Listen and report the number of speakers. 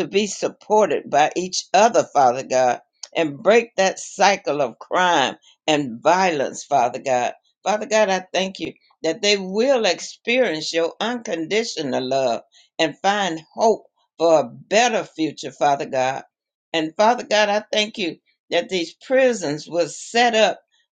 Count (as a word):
one